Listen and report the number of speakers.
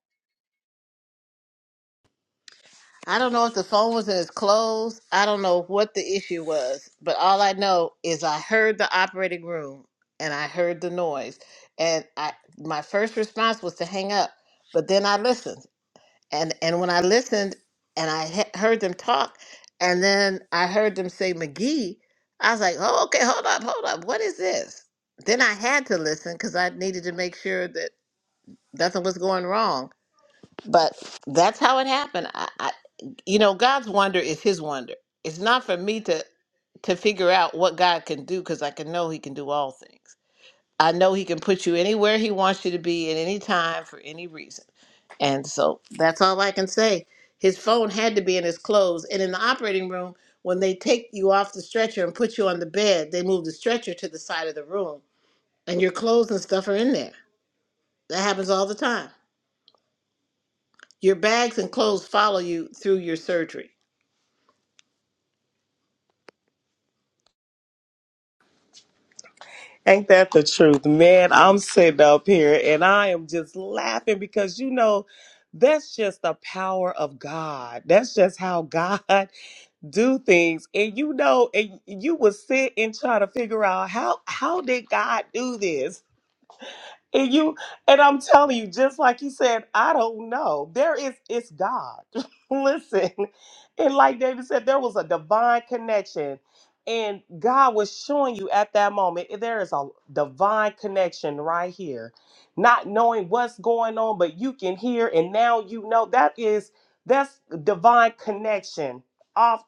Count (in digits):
2